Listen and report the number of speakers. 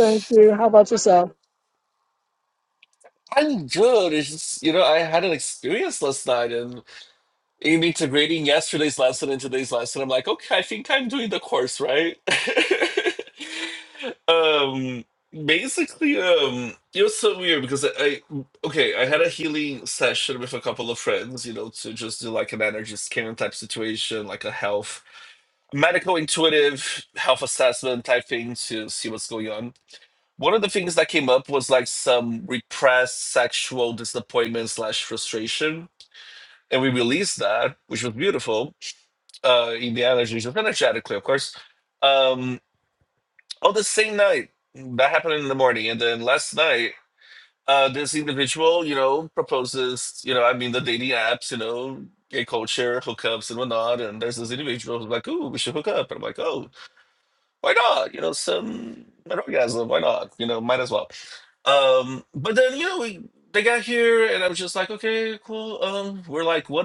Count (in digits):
2